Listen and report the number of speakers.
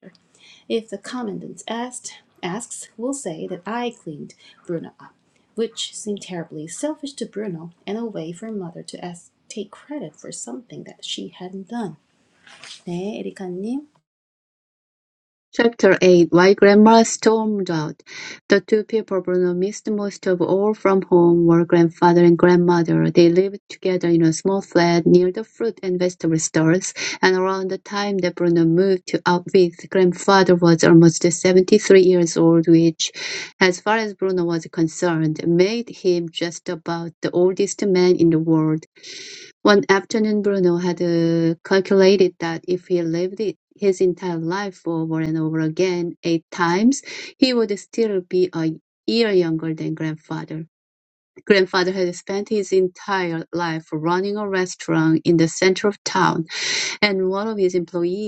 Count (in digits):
2